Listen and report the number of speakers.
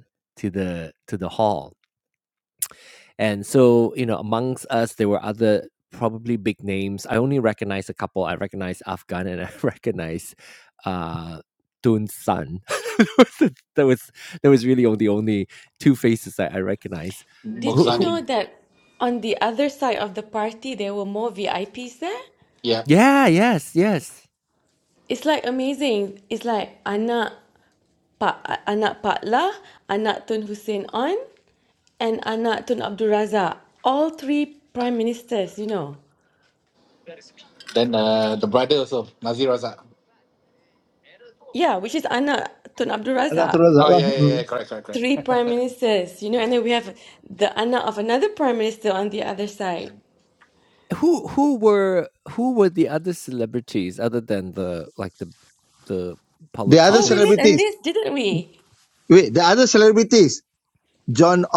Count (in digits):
4